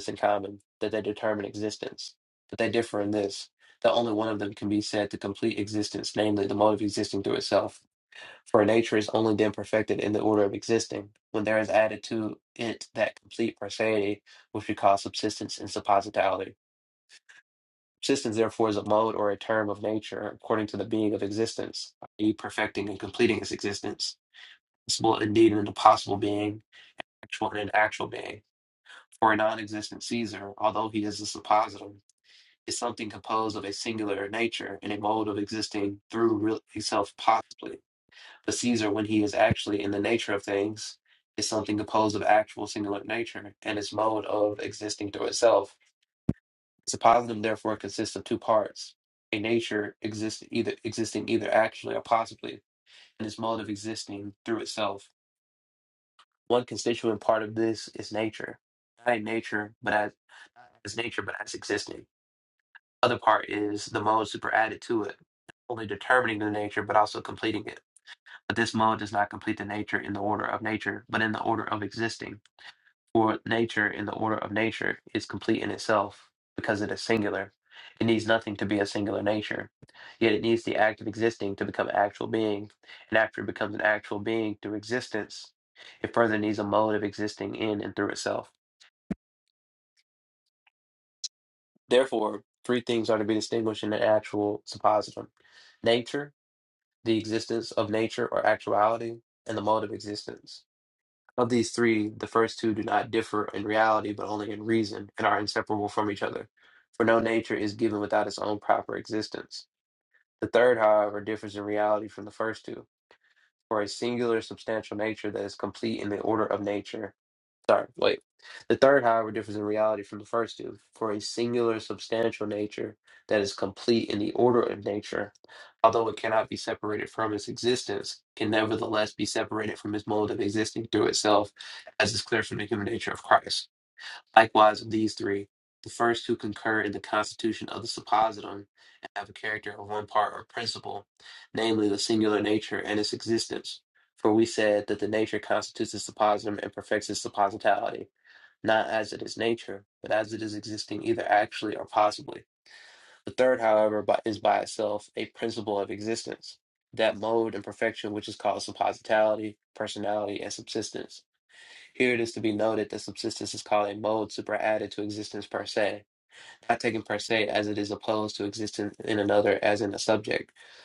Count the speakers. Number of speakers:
one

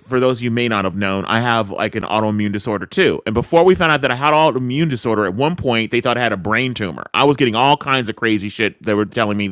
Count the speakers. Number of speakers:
one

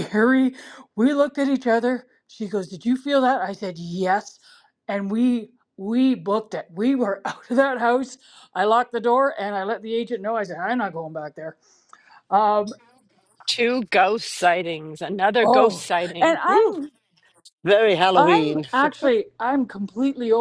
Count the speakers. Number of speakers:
three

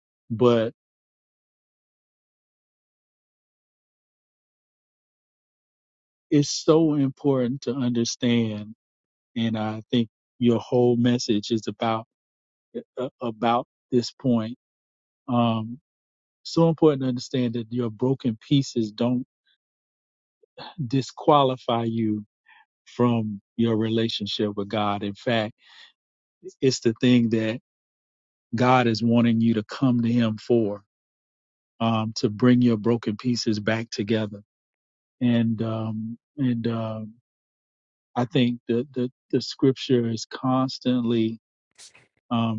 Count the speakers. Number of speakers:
one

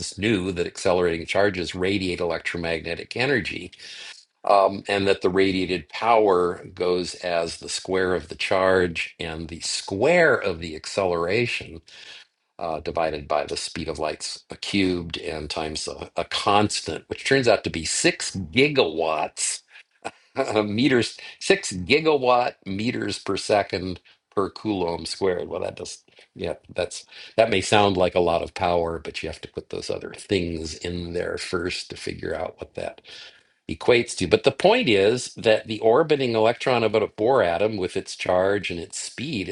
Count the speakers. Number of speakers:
one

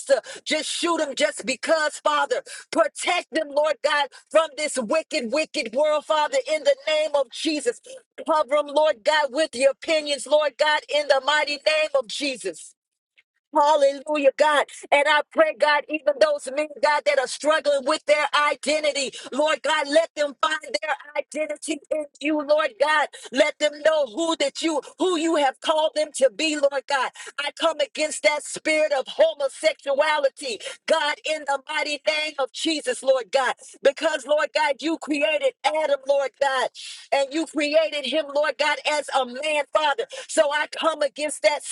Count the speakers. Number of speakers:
one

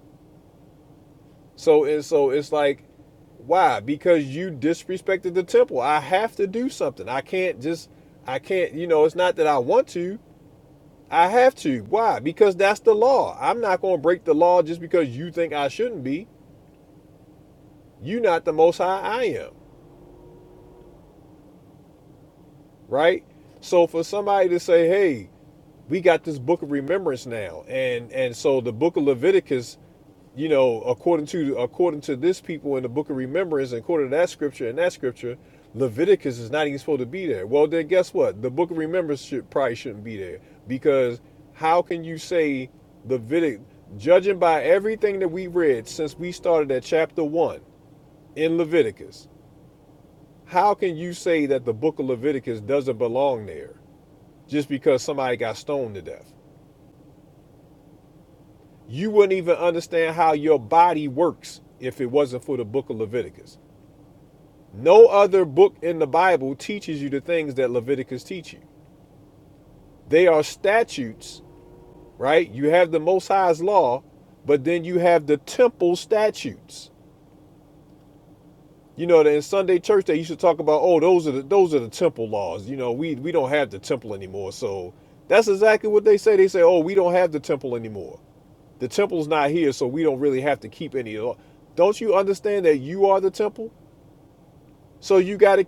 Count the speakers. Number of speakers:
one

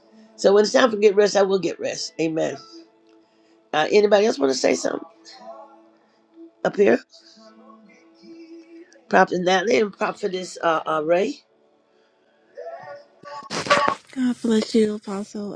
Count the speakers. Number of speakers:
two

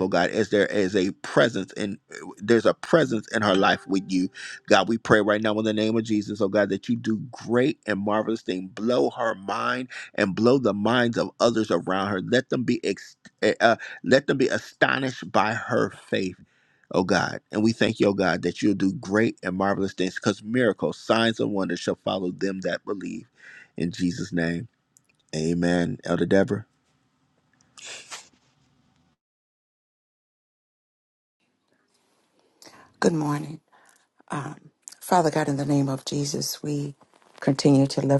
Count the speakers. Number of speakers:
two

